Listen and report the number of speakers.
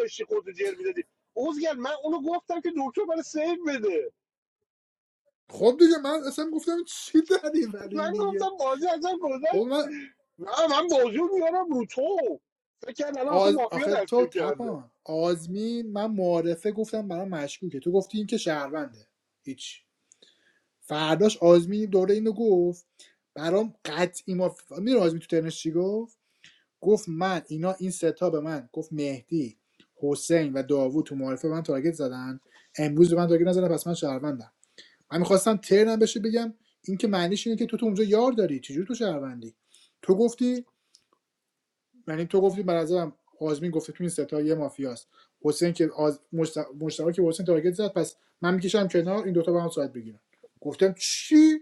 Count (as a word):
two